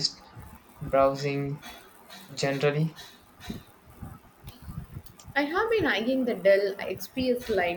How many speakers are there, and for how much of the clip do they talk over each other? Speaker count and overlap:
two, no overlap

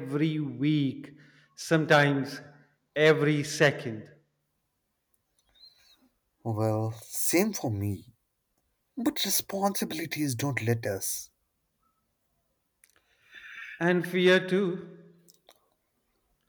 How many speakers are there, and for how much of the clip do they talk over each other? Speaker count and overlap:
two, no overlap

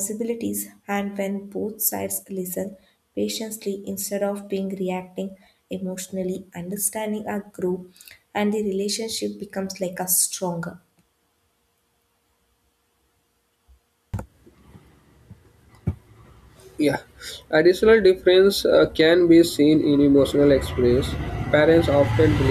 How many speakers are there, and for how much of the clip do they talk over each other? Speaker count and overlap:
two, no overlap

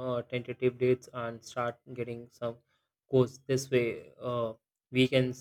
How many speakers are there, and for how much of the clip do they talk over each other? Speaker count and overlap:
one, no overlap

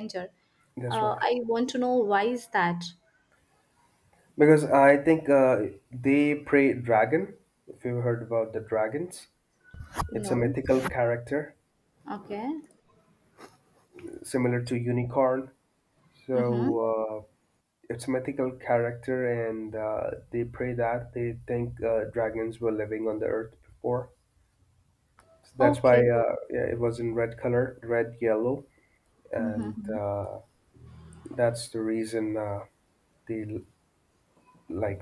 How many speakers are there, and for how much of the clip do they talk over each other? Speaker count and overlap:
two, about 5%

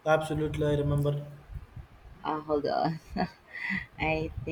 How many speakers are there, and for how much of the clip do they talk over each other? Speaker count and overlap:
two, no overlap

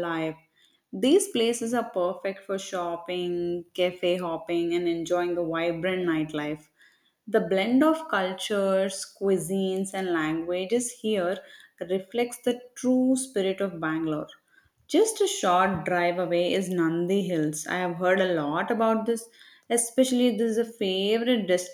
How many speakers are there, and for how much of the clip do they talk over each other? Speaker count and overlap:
one, no overlap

